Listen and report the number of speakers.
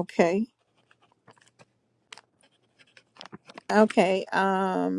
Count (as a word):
one